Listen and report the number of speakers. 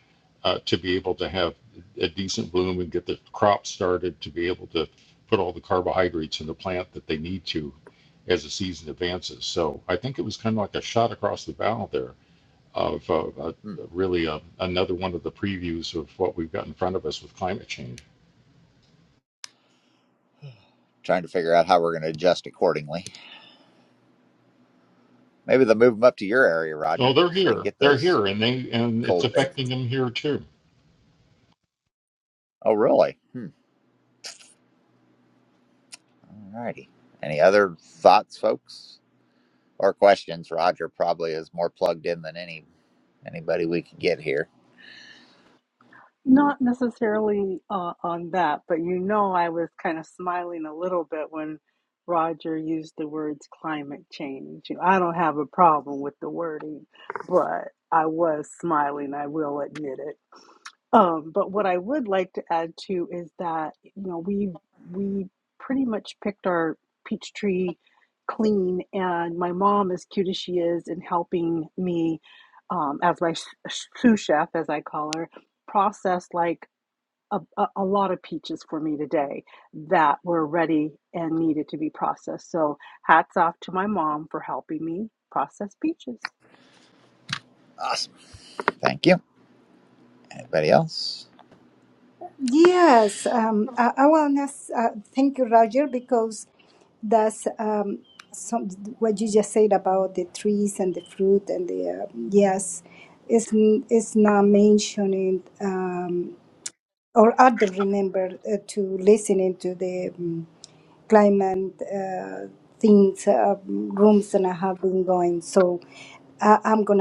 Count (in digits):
4